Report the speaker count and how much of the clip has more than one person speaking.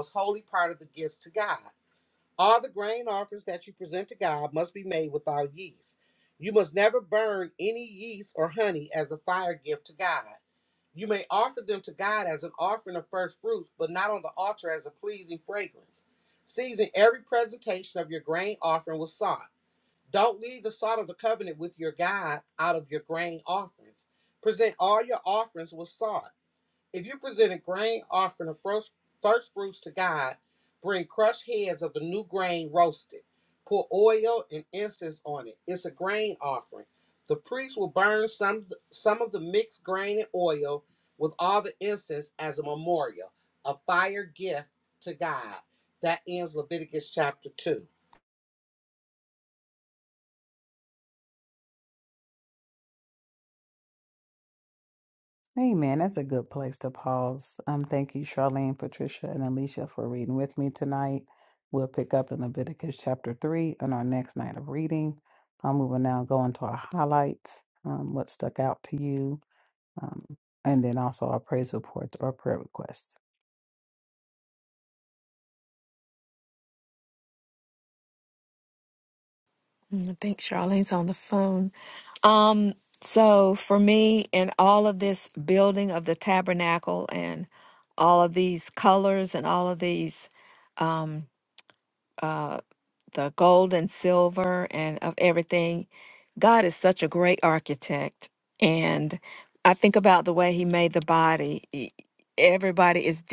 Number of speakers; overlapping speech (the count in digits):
3, no overlap